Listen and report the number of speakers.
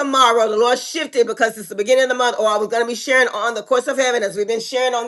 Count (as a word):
one